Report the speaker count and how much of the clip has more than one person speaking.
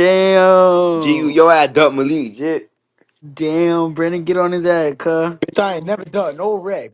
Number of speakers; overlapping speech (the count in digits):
3, no overlap